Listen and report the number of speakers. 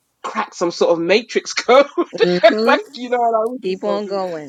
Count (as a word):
two